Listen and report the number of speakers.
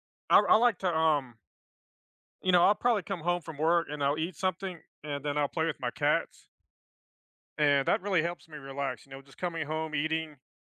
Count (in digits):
1